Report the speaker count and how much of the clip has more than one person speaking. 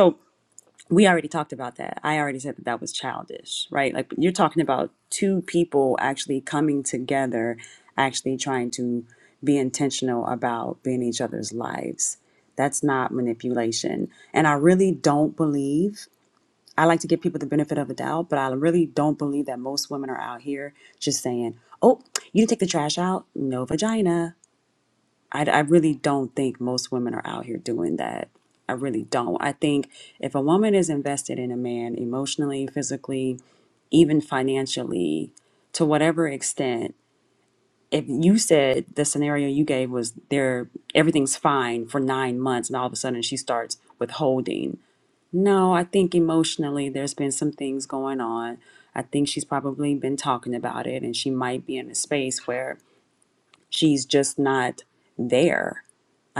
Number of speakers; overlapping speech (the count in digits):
1, no overlap